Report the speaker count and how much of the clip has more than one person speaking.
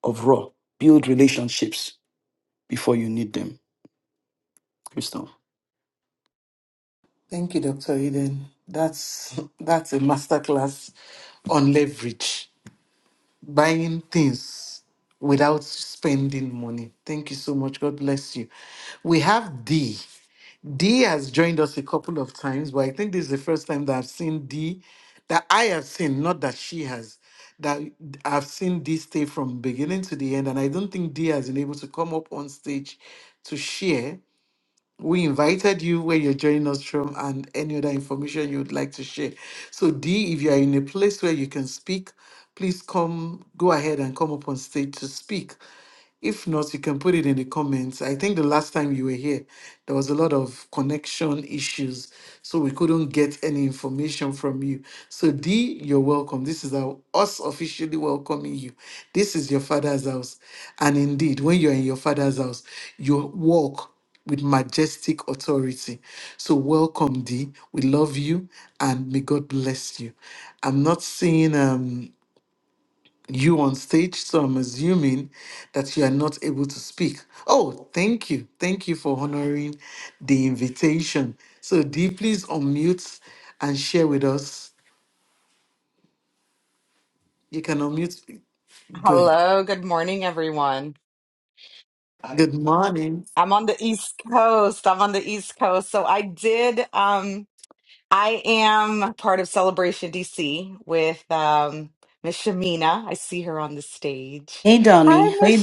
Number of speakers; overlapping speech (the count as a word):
three, under 1%